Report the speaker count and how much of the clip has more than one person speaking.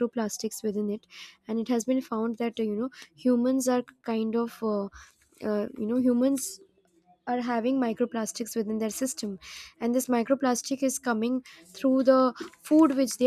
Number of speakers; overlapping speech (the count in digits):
1, no overlap